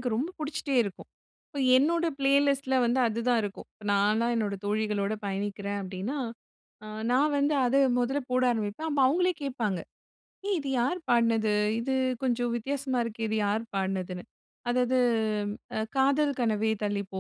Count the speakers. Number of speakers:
1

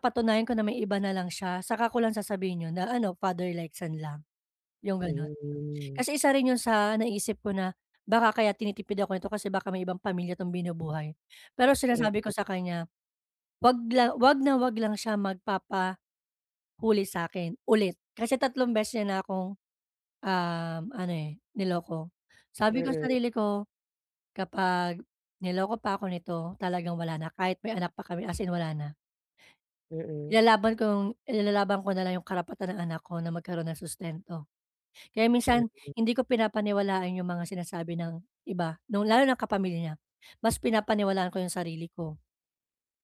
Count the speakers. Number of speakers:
2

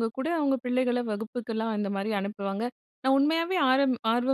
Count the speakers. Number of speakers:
1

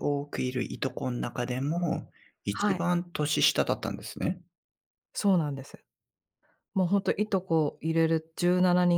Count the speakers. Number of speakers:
2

